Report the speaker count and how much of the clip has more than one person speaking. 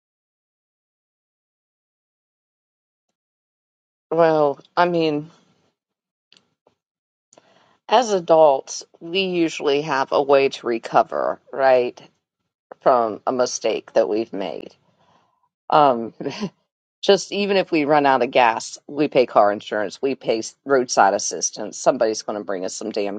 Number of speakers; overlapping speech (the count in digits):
1, no overlap